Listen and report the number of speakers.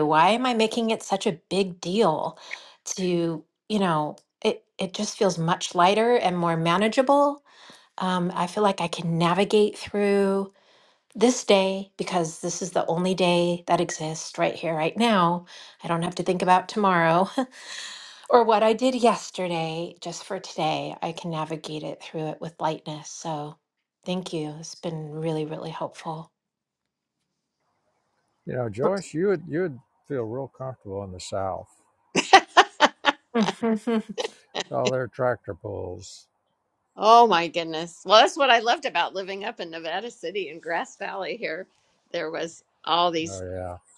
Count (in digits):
3